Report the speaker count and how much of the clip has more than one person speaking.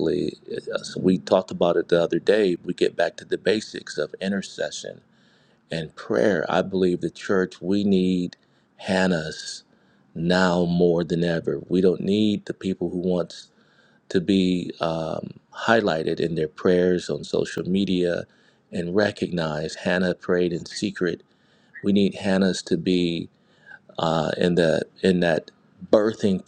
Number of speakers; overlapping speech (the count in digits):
1, no overlap